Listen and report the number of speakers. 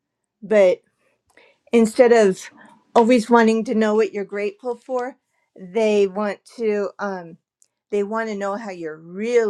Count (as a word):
one